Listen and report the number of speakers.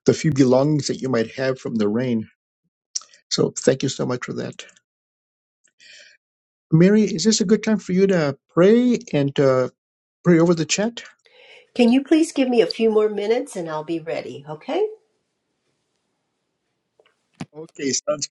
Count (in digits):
2